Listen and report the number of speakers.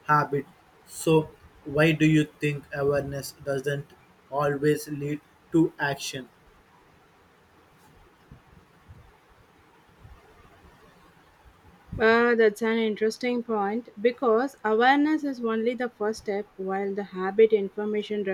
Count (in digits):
2